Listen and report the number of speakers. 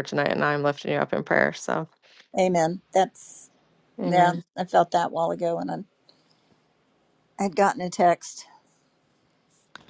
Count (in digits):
2